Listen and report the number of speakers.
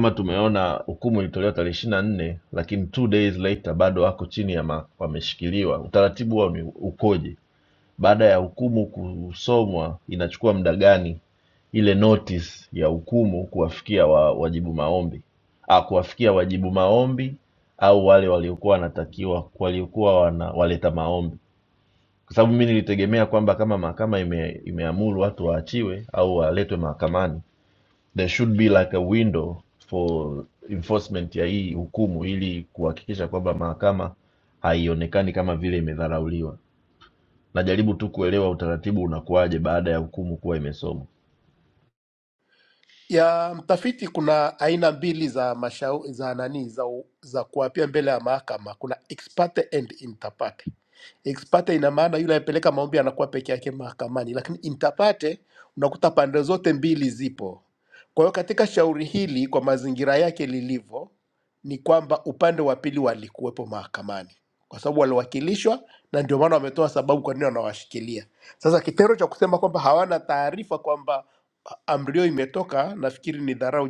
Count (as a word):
two